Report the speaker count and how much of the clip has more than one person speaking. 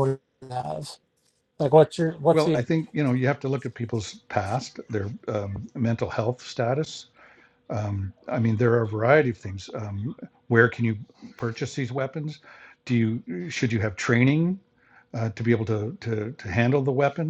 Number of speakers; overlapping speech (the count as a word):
two, about 2%